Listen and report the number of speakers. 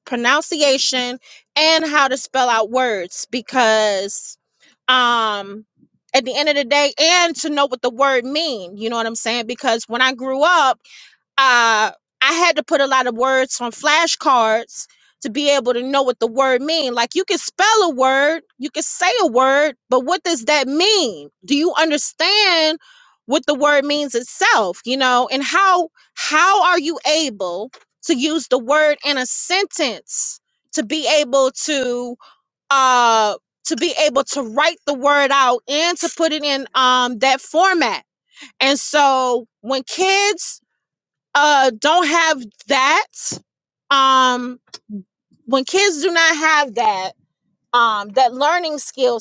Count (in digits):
1